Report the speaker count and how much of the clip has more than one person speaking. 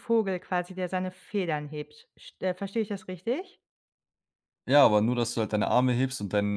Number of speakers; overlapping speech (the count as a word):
two, no overlap